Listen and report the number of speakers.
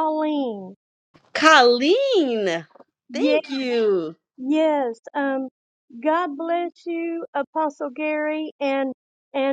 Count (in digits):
2